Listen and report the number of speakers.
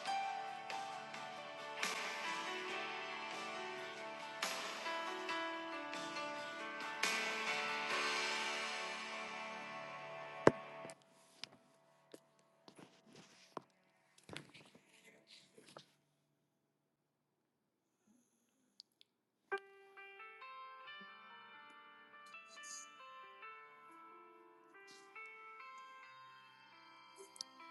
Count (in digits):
0